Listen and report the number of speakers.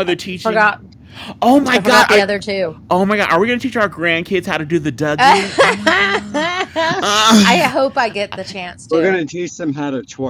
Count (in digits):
3